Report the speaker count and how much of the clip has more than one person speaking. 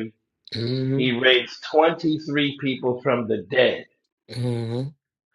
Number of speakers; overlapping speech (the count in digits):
2, about 1%